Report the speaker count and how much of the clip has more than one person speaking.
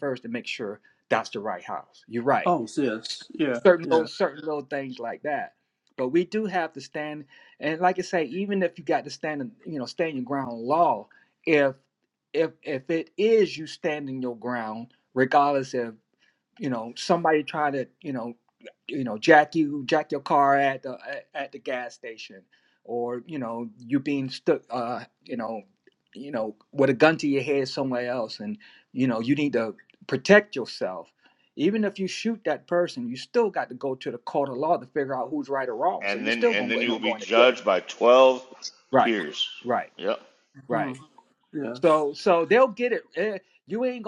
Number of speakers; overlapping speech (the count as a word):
three, about 6%